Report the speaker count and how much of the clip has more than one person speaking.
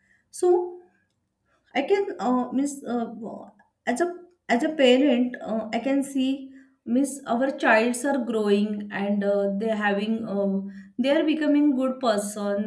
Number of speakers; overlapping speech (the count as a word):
one, no overlap